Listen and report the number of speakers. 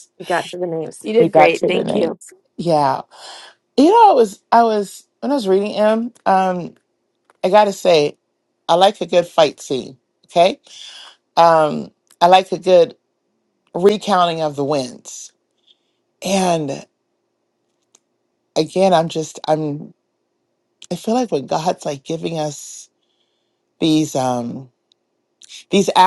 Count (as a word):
two